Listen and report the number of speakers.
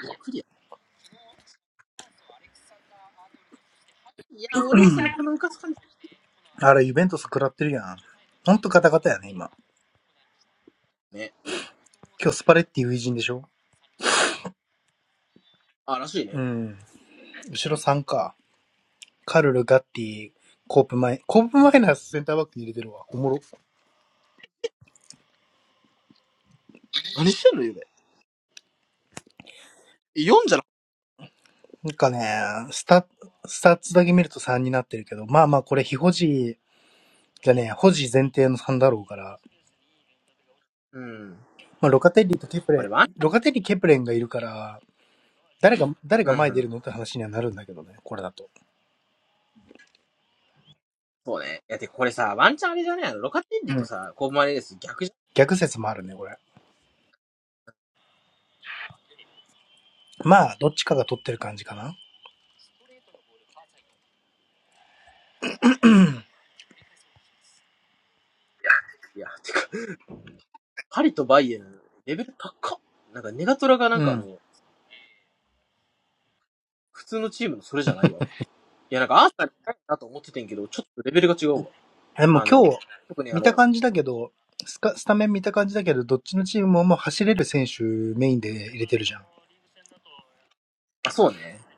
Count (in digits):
2